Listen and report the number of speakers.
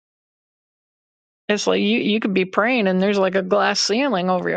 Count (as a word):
one